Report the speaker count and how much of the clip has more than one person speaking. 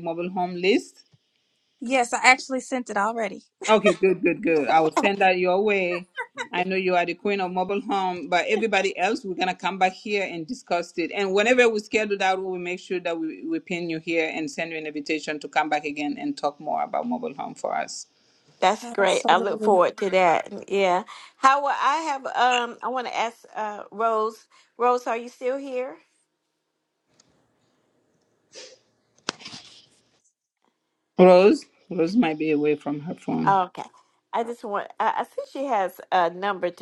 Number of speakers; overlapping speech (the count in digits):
3, about 3%